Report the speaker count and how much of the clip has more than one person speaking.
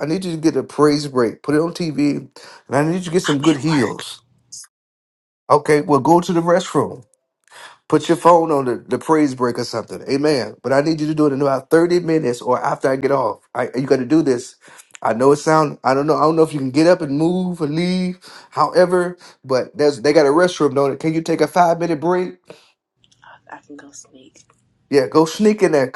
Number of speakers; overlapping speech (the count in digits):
2, about 3%